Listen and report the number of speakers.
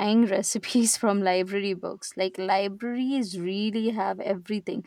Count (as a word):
one